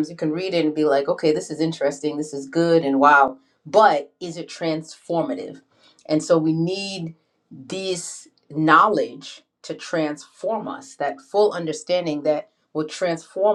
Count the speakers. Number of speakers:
one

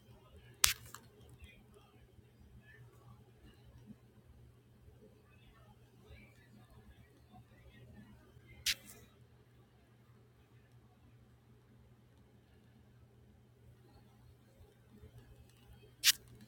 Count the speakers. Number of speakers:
zero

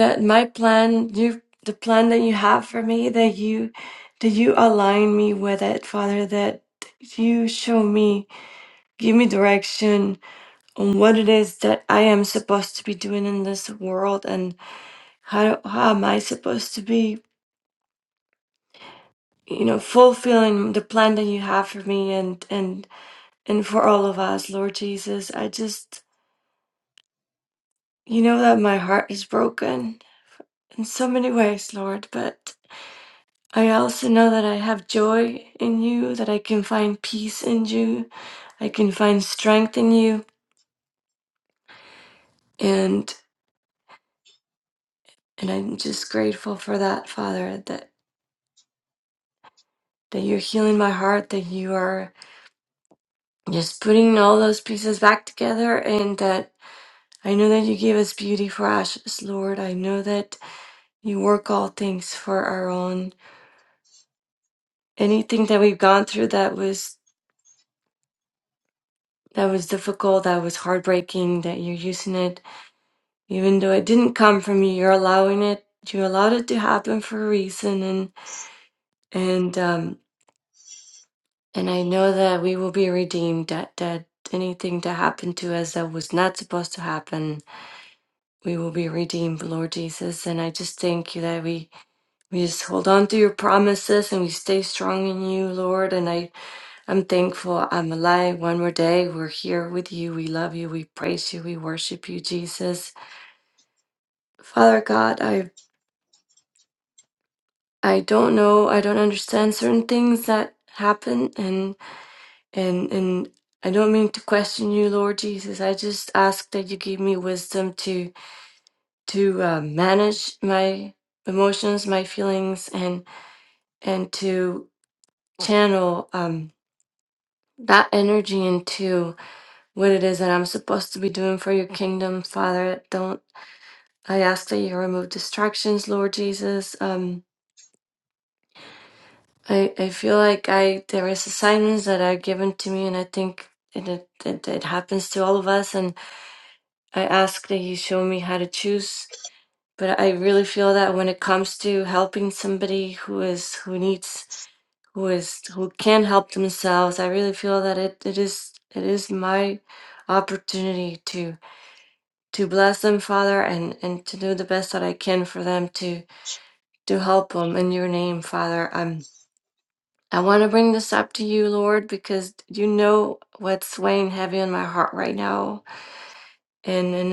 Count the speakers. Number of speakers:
one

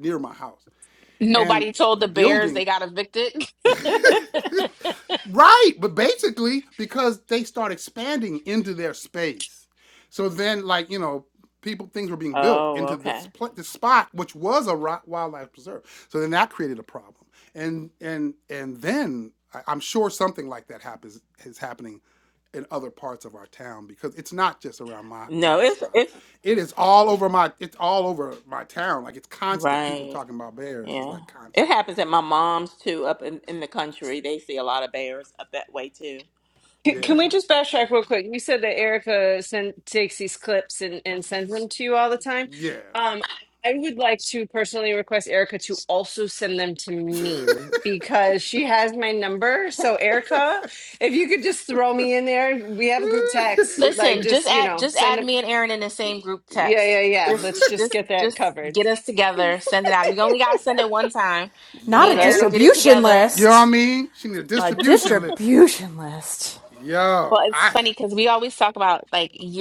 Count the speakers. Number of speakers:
five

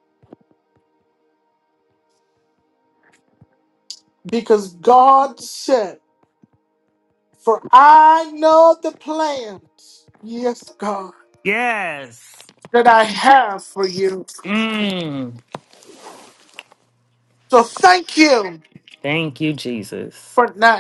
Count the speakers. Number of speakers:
two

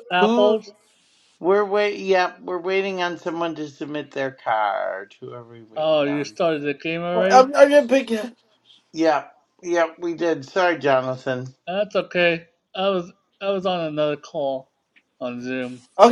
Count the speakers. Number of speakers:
three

